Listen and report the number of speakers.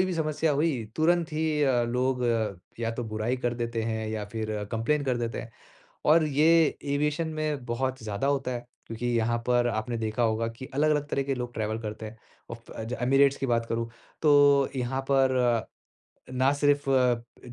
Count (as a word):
one